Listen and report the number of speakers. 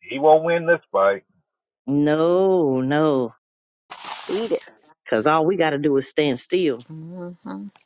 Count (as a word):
three